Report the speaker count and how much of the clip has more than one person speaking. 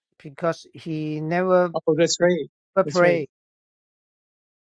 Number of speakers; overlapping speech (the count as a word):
two, about 8%